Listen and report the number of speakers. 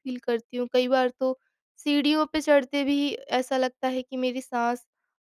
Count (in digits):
1